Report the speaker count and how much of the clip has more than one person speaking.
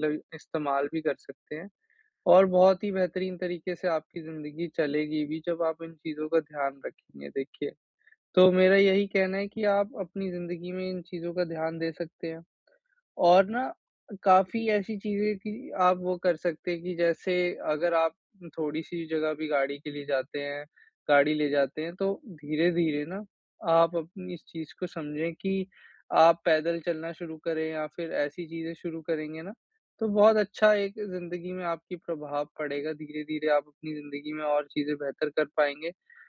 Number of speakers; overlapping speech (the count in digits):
1, no overlap